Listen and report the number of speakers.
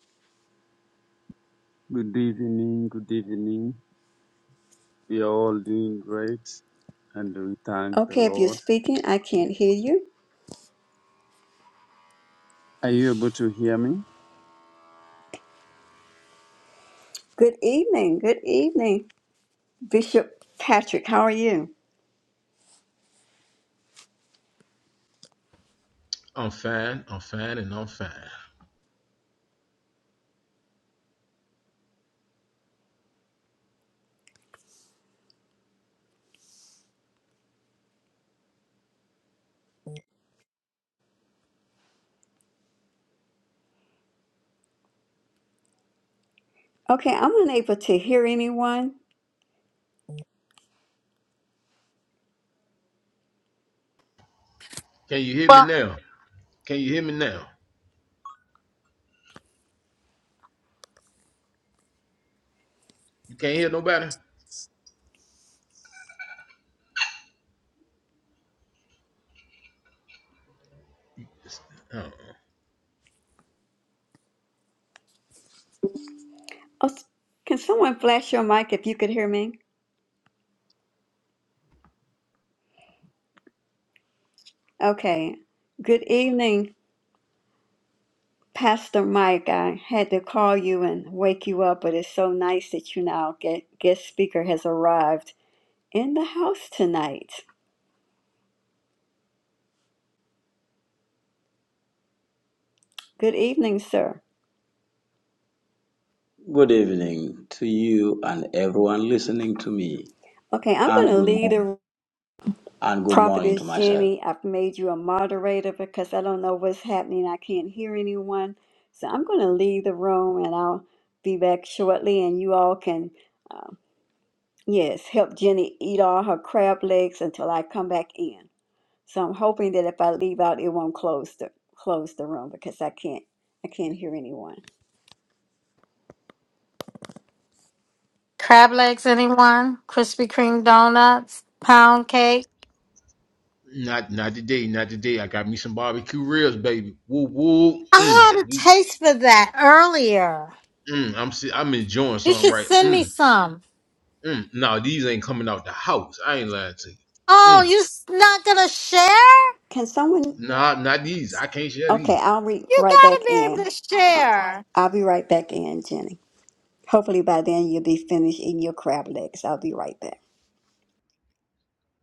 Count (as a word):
five